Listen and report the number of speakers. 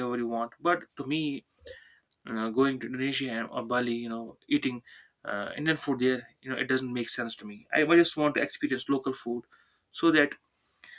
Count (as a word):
one